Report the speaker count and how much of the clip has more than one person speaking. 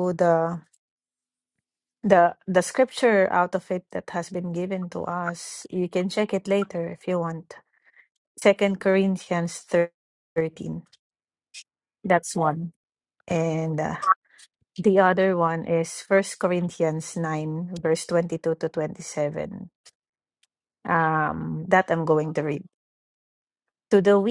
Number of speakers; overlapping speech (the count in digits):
1, no overlap